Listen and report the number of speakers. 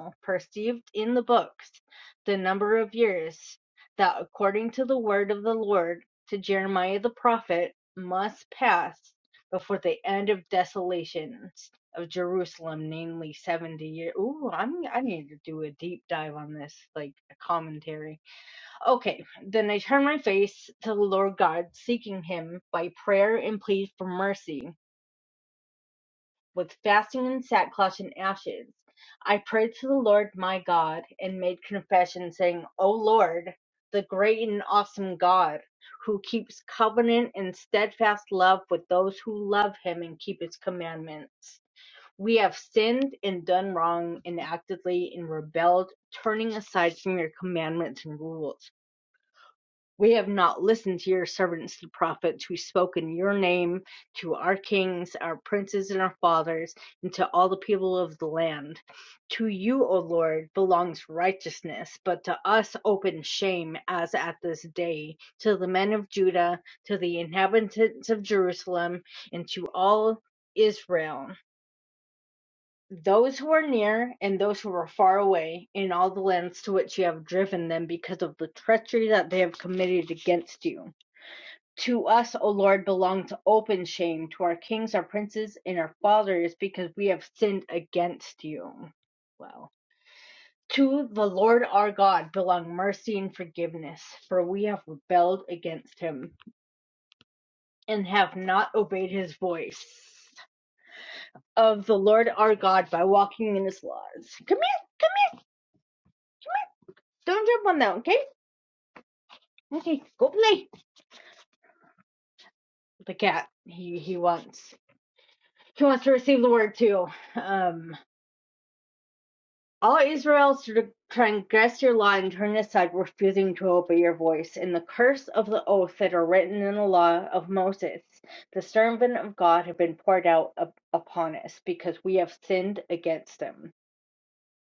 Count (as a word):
one